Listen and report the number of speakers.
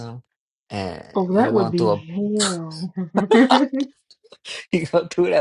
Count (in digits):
2